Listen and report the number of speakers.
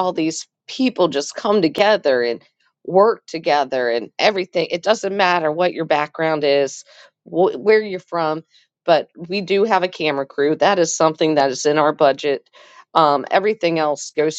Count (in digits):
1